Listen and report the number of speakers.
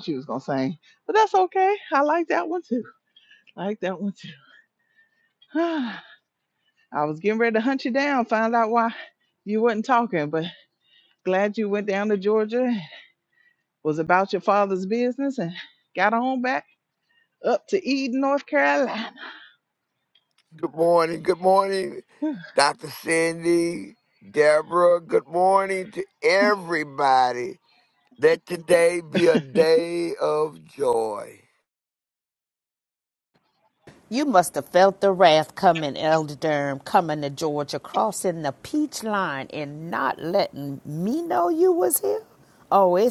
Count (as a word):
three